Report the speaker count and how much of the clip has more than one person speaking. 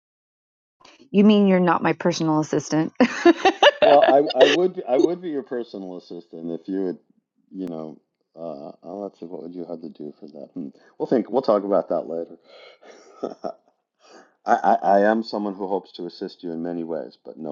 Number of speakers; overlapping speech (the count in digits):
2, no overlap